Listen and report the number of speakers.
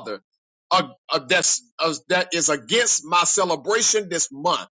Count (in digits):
1